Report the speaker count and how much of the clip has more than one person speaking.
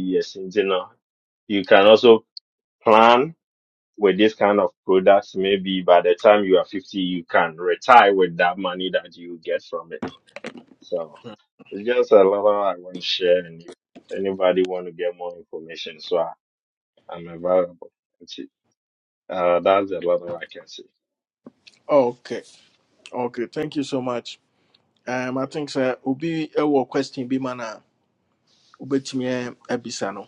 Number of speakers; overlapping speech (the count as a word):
two, no overlap